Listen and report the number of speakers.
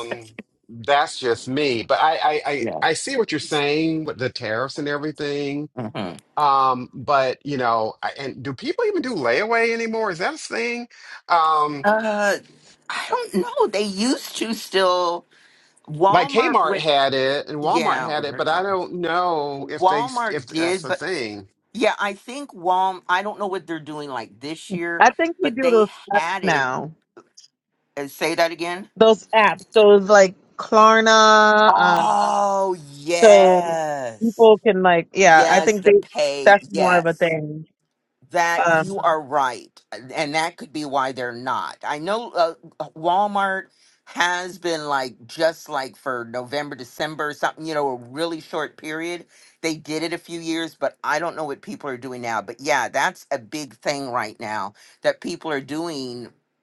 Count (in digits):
3